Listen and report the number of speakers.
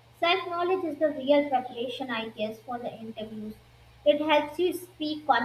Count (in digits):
1